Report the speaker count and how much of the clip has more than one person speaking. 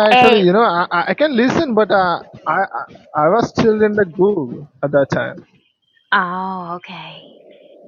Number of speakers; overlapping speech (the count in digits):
2, about 5%